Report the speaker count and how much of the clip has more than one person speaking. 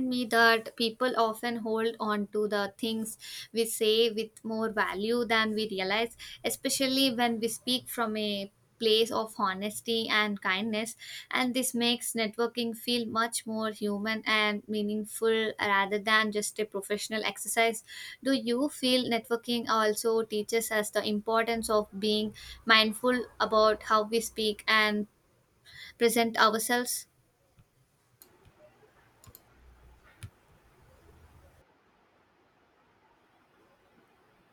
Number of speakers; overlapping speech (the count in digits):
1, no overlap